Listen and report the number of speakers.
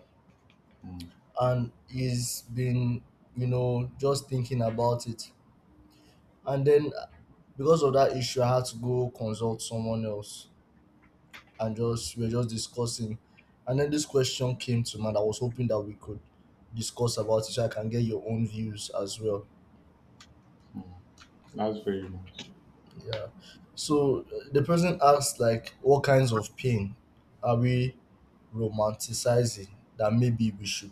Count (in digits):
2